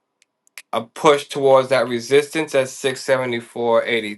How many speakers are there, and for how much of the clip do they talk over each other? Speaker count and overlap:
one, no overlap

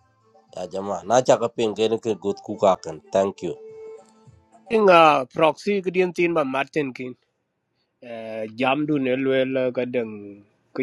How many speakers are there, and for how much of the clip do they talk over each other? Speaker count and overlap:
two, no overlap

